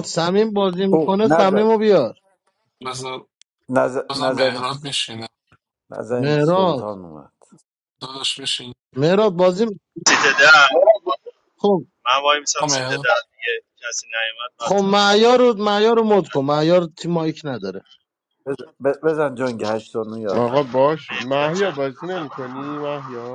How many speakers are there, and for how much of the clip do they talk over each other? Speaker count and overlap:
5, about 21%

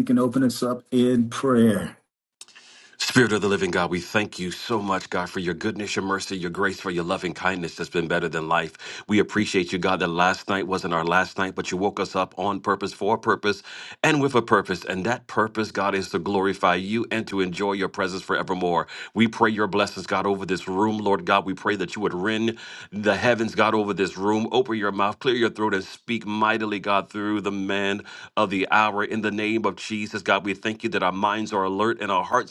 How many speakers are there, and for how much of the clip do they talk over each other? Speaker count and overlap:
2, no overlap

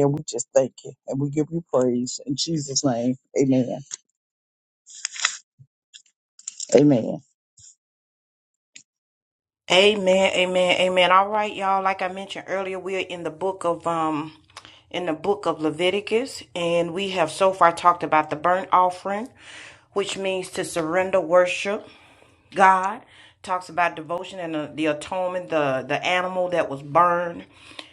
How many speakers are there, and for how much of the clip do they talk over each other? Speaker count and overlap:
2, no overlap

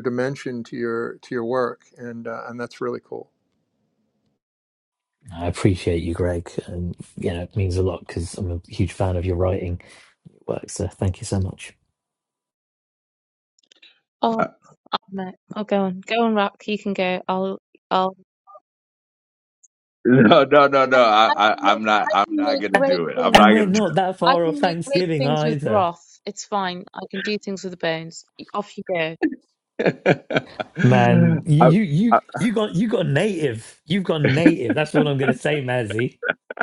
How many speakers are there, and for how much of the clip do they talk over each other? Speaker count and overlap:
4, about 13%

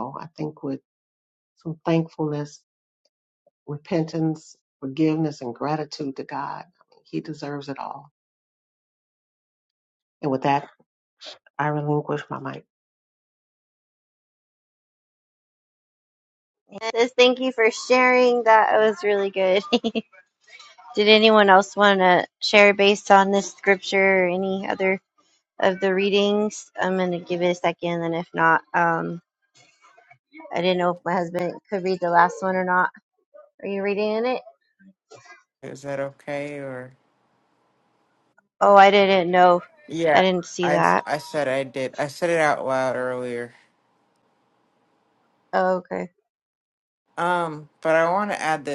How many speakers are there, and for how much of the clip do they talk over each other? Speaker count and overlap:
3, about 1%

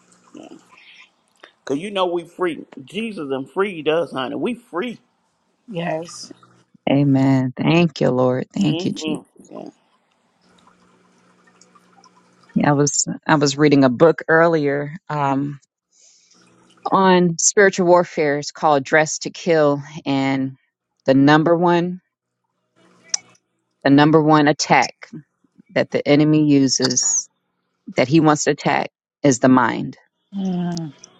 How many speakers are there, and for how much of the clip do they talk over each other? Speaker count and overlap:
3, about 2%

